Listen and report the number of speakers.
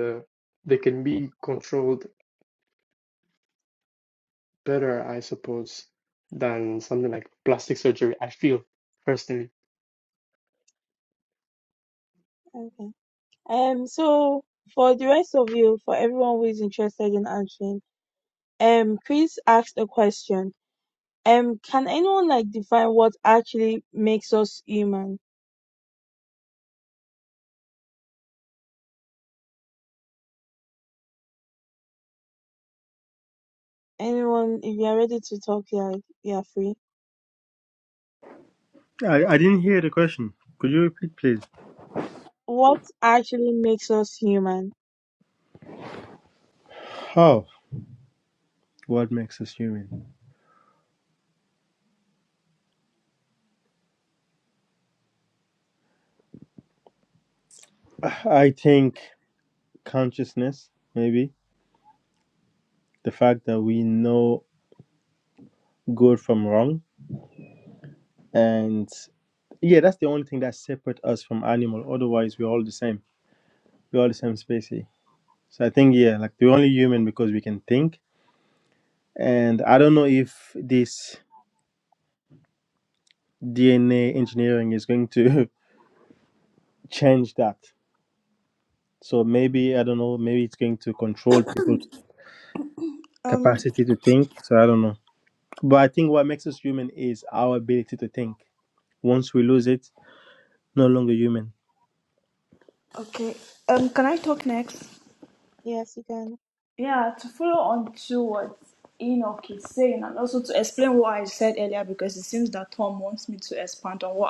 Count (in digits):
4